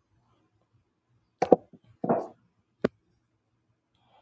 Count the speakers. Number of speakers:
0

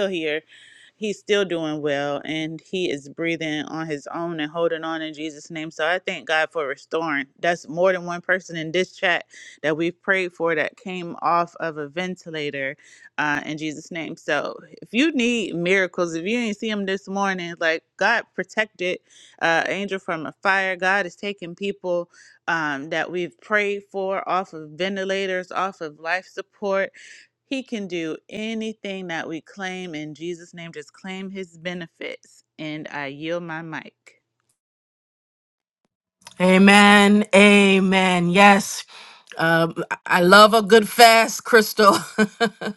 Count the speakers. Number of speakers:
2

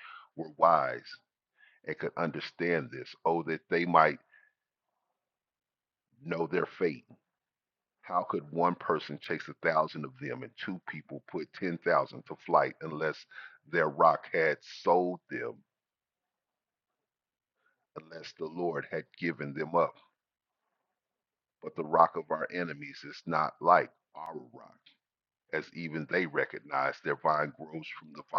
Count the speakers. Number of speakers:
1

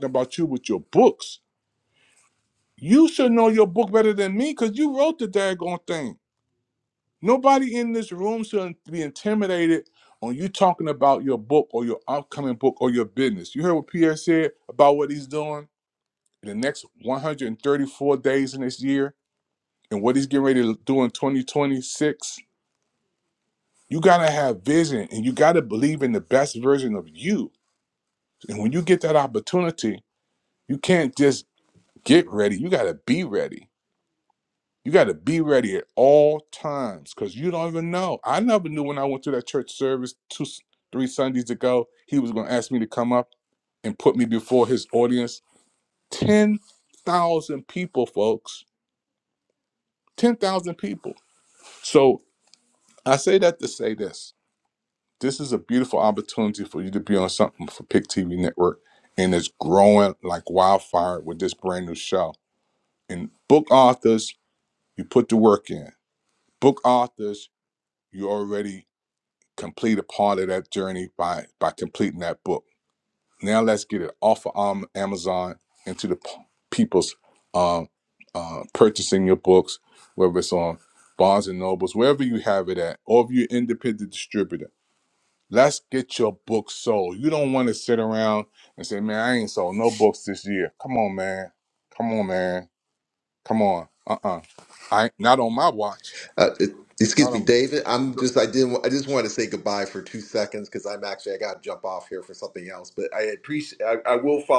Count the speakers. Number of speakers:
2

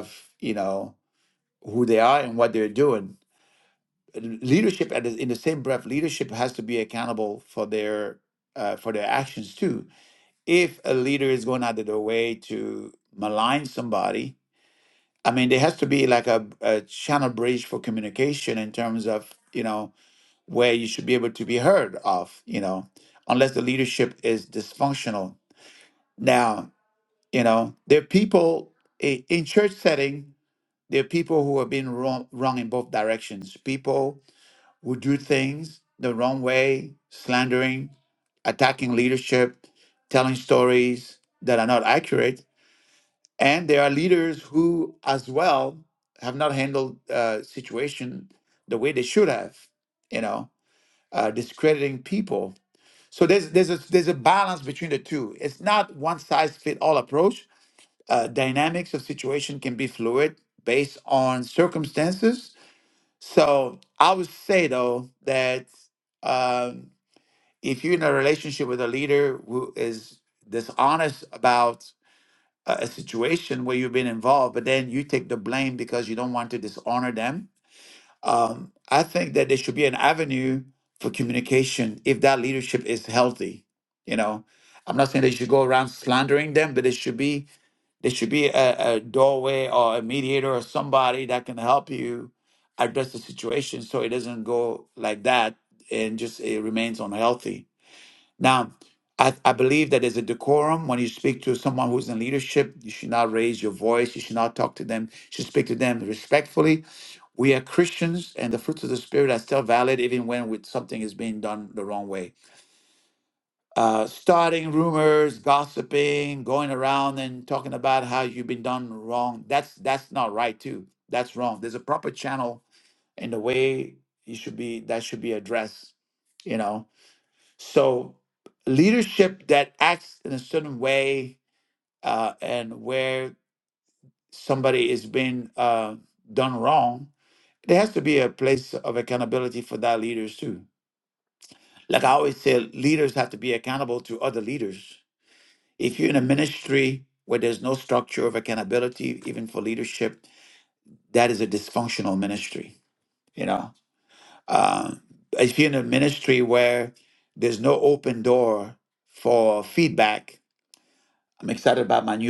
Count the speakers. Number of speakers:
1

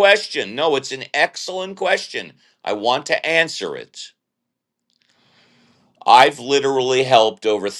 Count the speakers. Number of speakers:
1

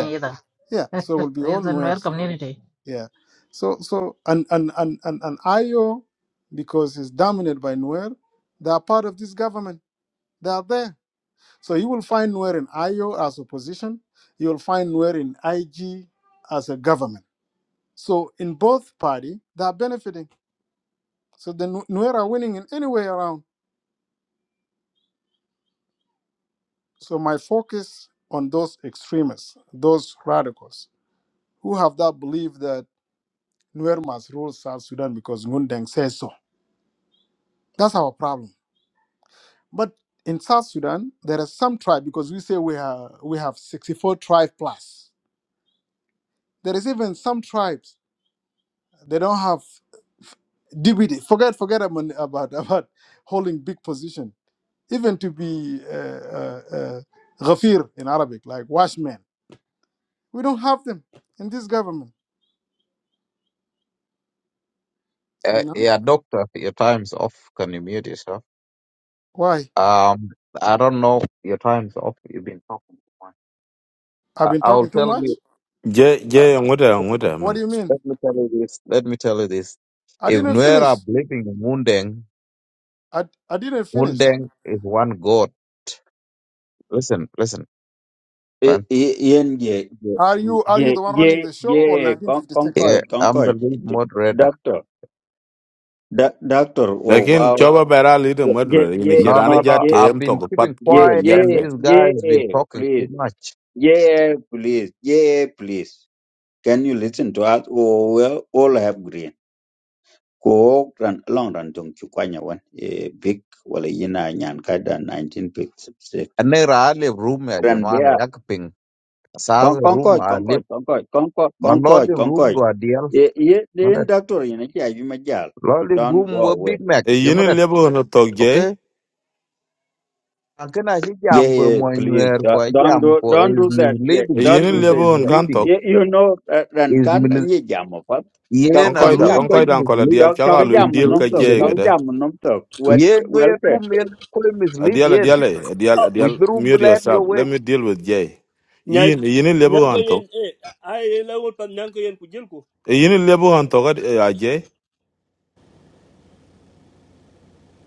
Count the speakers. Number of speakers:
6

